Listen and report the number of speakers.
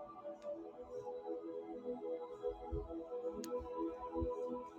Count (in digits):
0